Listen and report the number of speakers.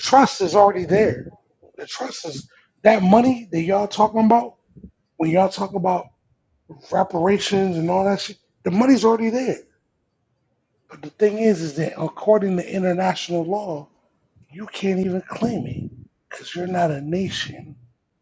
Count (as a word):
one